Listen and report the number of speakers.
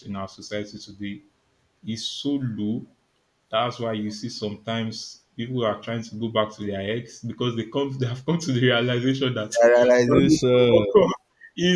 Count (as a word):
two